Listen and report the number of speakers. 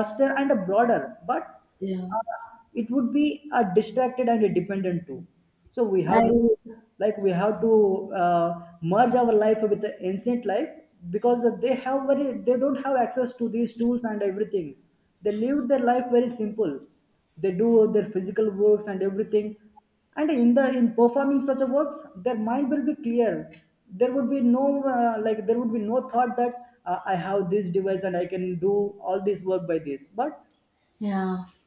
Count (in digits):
2